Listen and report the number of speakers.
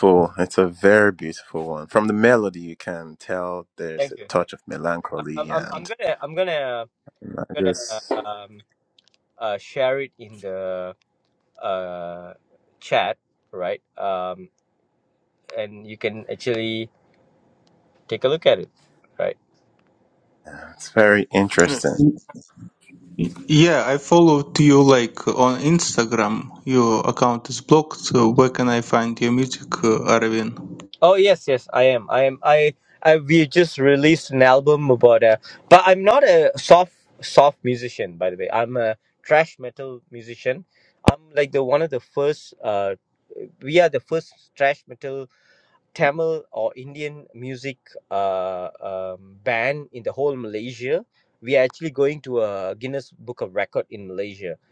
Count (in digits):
3